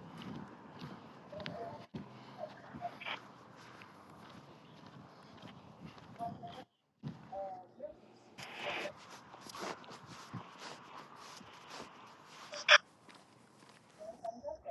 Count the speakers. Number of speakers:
0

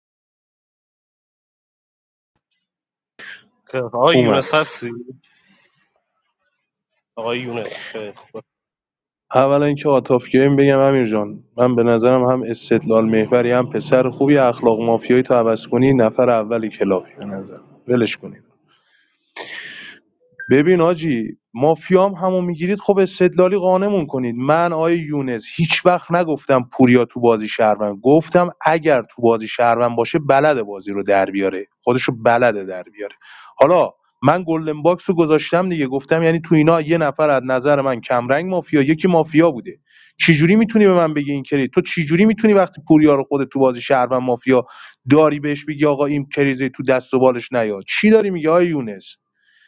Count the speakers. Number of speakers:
2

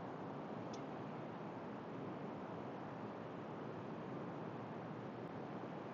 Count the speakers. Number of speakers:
0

